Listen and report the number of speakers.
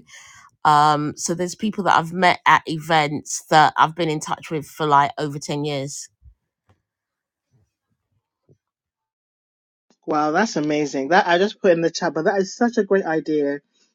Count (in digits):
2